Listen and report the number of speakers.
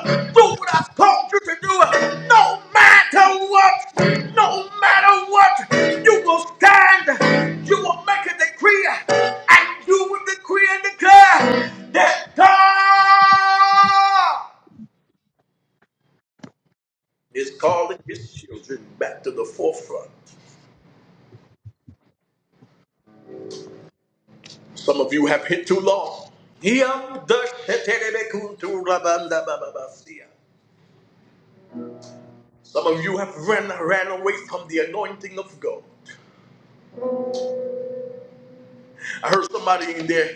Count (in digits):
1